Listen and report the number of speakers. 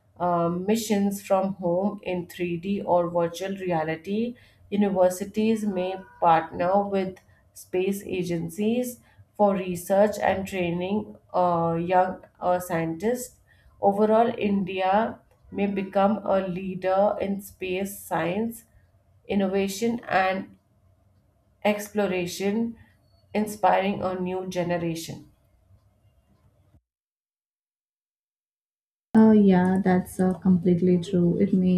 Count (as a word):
two